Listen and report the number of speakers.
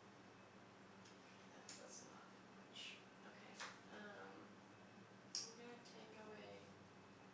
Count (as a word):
one